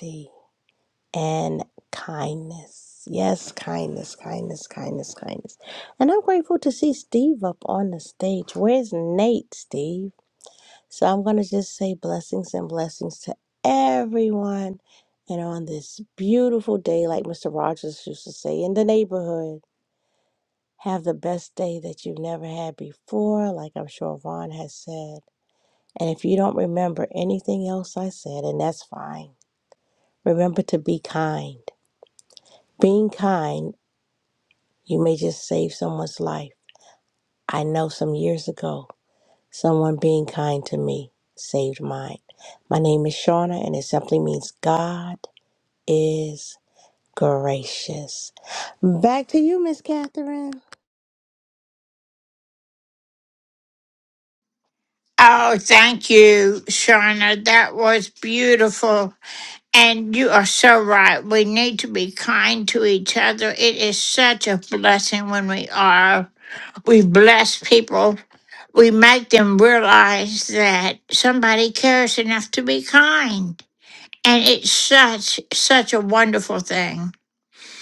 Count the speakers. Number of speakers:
2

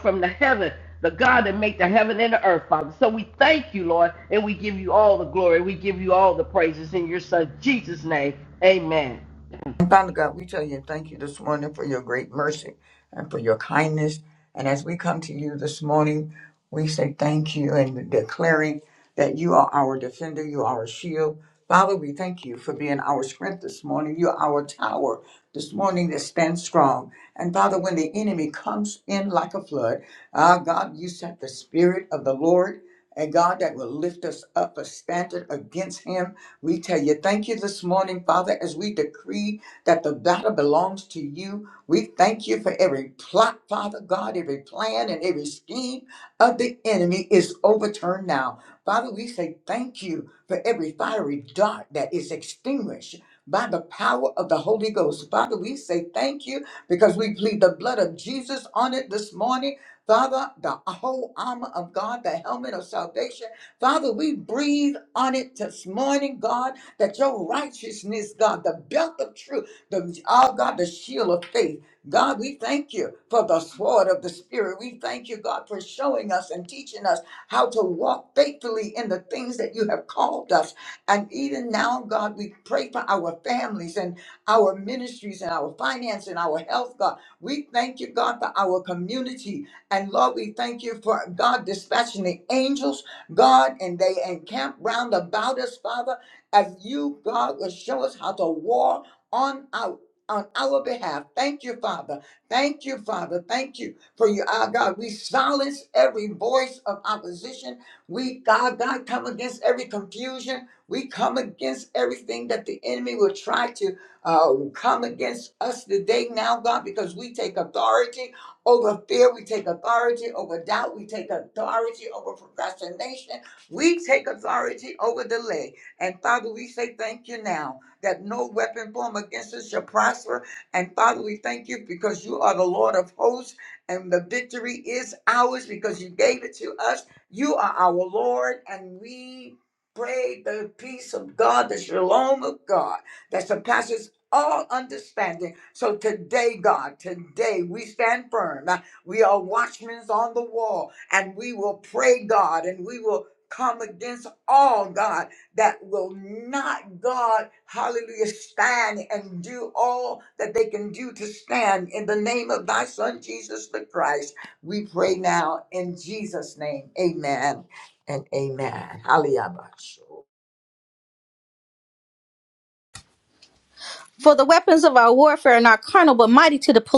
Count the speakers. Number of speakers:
3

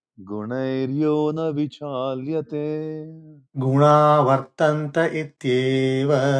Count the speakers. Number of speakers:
2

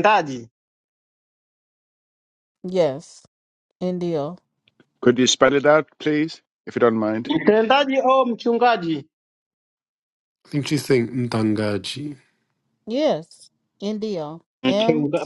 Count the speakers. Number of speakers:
4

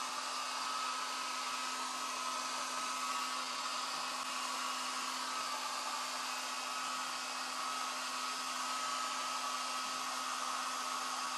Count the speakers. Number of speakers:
0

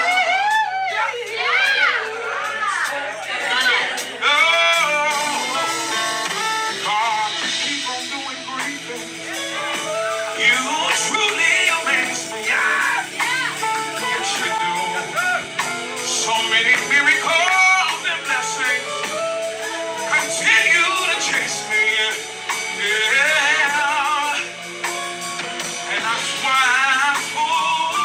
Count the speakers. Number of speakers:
0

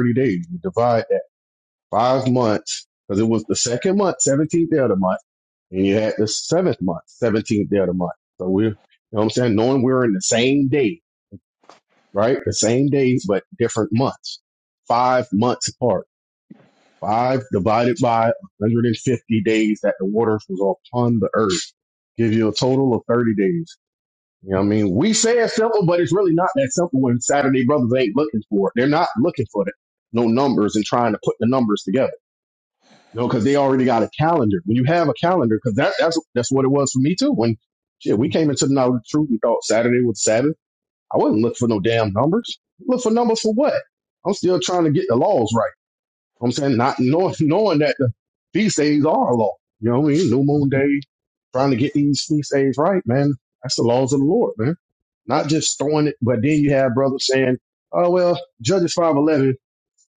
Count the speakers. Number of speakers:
1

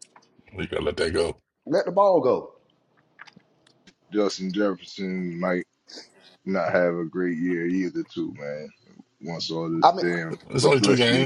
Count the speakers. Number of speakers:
3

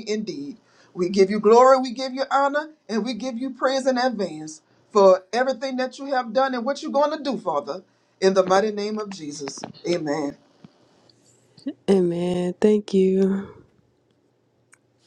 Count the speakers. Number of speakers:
2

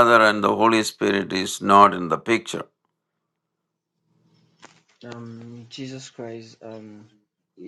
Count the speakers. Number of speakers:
2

